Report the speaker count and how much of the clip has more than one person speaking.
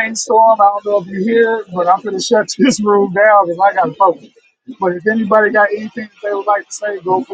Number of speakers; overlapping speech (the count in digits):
1, no overlap